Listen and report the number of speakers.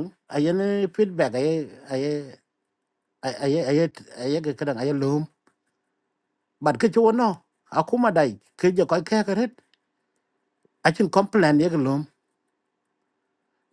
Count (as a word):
one